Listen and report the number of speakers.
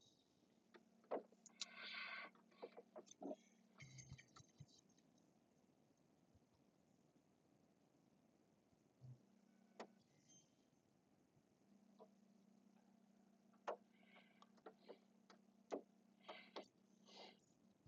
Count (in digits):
0